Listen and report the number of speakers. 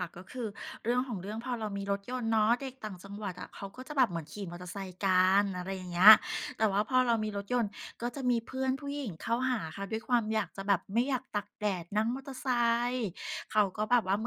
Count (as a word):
one